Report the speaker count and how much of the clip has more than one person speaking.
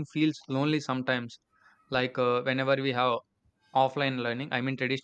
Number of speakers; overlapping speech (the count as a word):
one, no overlap